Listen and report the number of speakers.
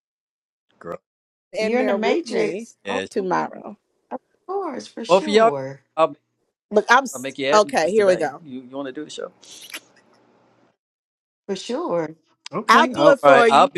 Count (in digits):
3